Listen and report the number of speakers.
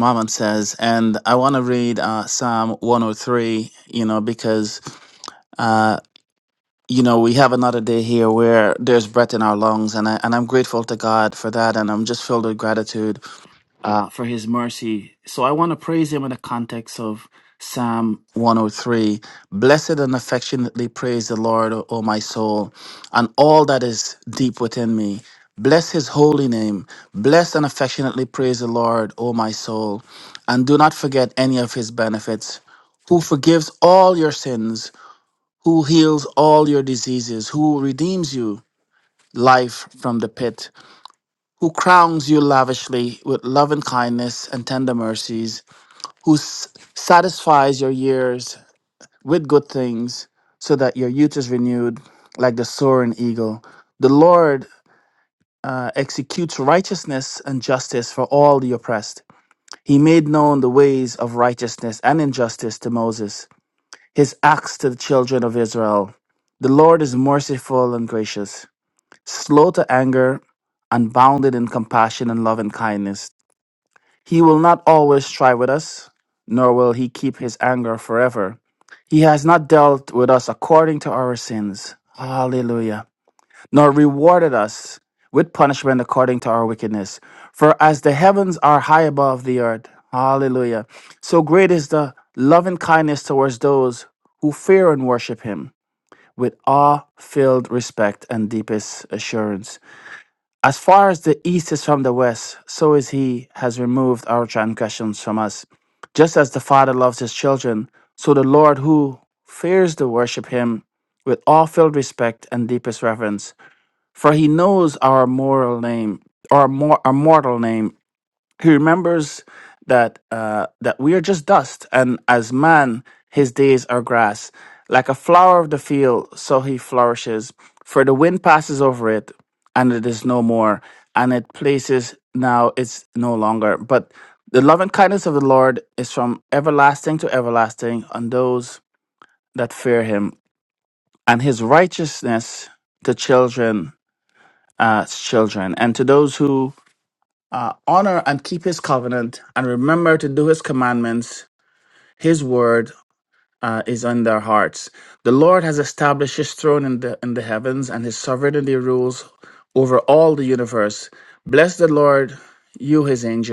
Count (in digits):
1